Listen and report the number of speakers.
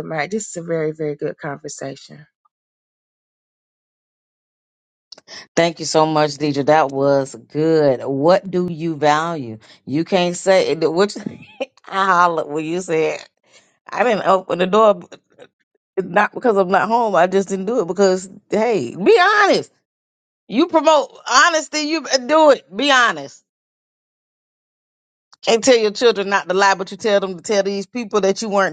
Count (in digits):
2